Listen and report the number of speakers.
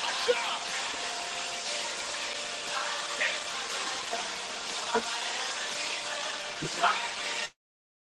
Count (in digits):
0